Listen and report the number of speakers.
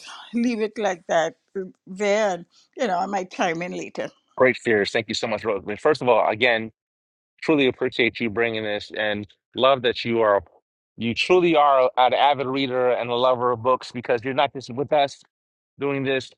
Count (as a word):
two